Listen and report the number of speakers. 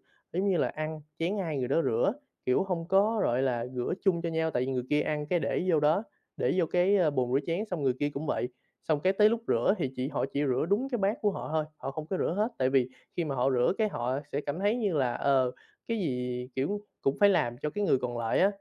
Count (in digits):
1